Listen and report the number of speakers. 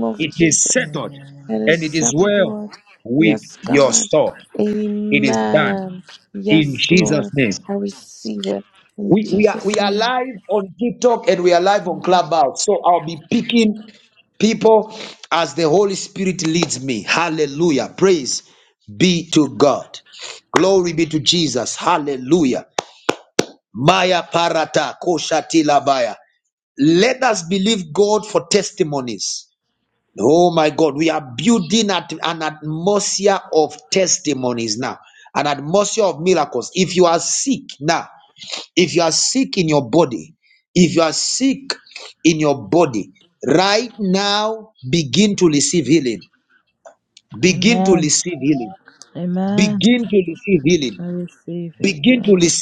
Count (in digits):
3